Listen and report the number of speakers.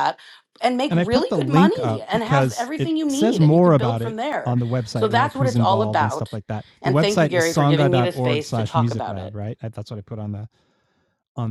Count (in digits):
2